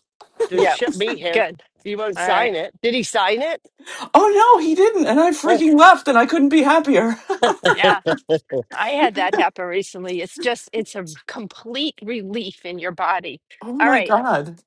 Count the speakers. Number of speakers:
three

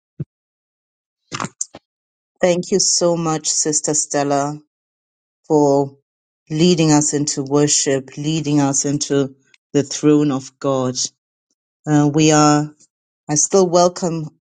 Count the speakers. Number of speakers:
one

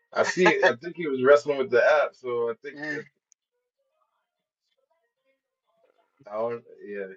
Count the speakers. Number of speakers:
one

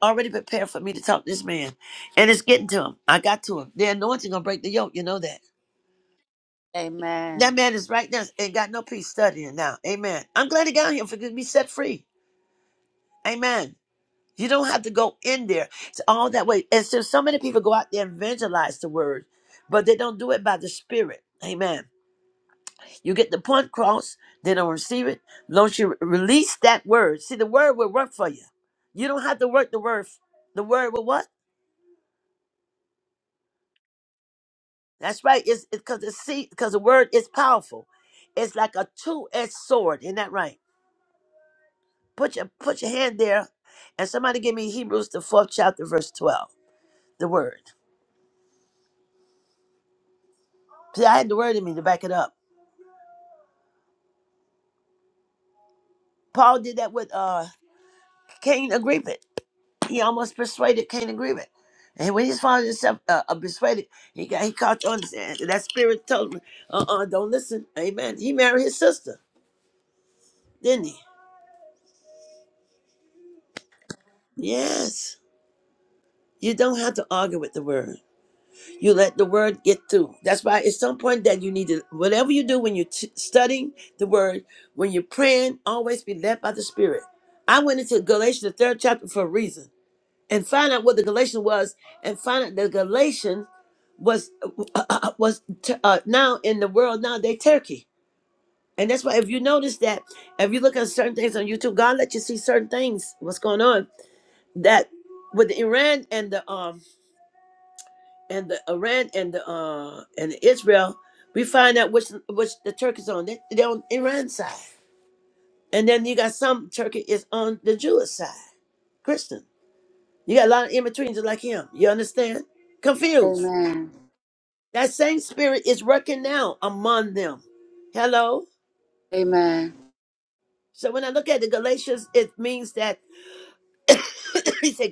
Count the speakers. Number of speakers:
two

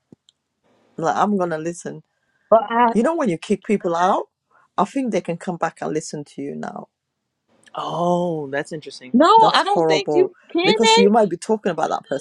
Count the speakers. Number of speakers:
three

